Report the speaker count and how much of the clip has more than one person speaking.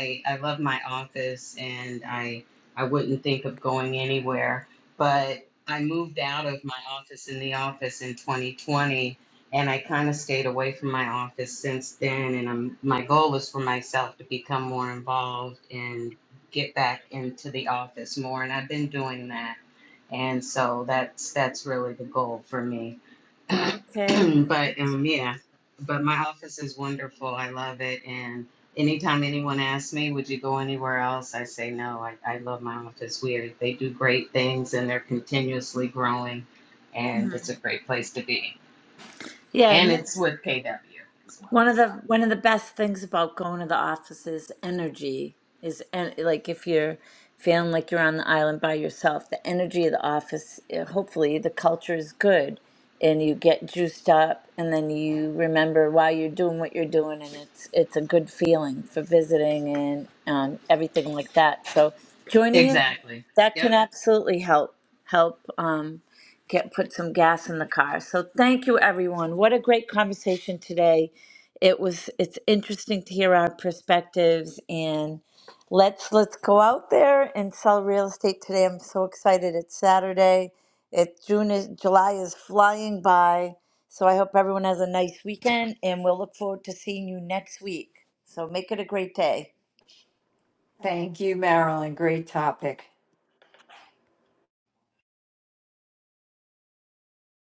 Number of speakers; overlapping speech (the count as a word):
three, about 1%